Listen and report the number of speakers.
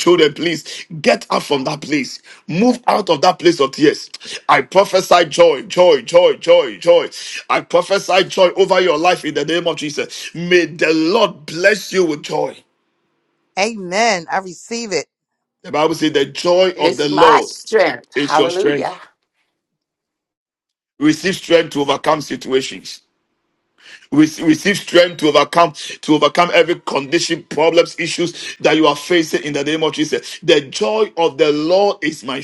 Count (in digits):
3